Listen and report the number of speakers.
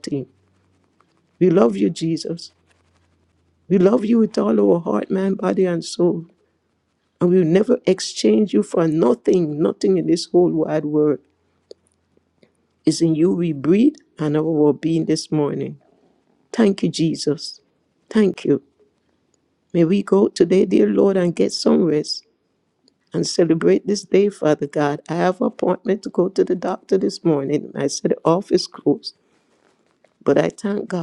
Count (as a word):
one